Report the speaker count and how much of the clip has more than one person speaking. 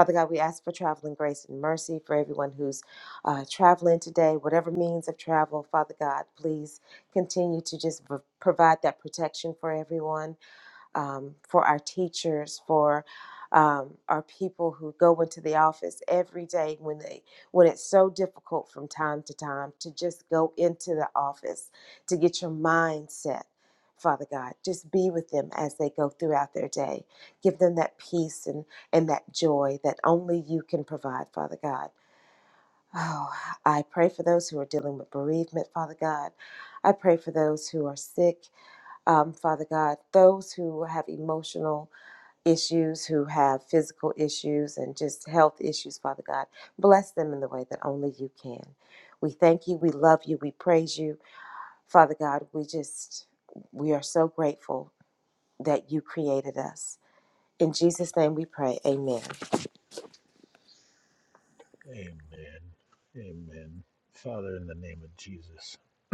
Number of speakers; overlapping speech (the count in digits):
2, no overlap